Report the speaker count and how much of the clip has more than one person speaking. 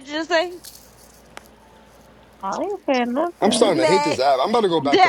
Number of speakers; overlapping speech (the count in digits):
3, about 21%